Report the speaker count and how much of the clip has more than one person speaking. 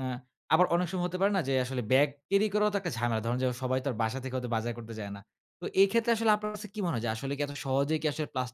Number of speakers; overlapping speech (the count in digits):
1, no overlap